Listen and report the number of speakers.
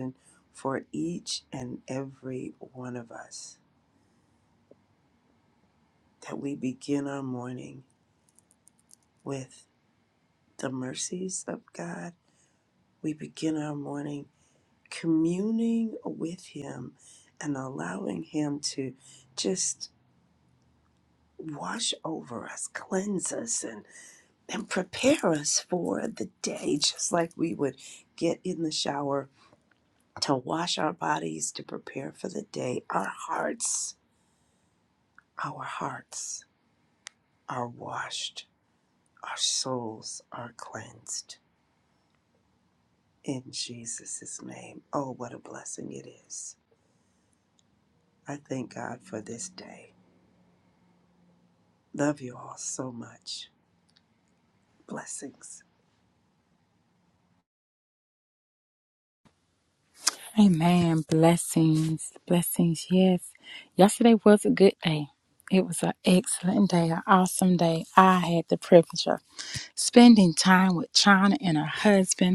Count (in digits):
2